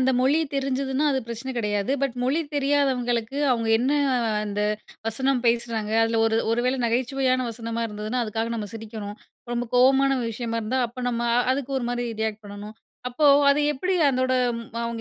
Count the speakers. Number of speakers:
1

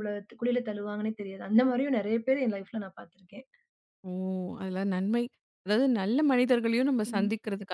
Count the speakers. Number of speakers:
2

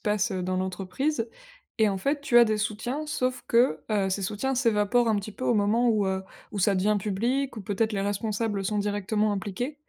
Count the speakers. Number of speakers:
1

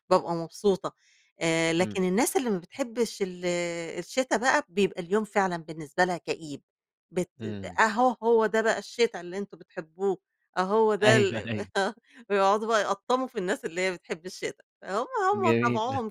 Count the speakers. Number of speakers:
2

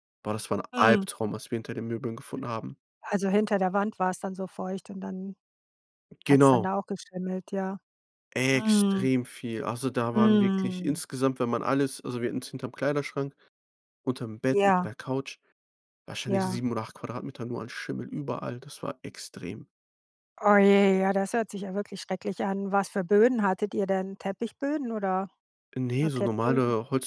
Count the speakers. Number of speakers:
2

